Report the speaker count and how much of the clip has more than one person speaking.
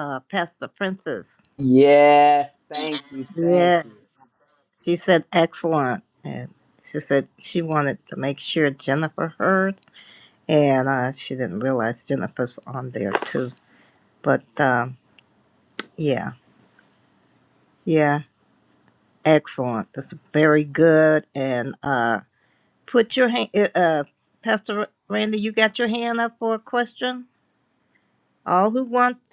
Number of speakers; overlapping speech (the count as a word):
two, about 2%